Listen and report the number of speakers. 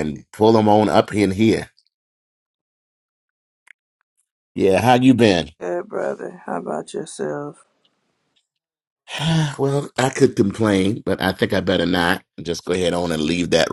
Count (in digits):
2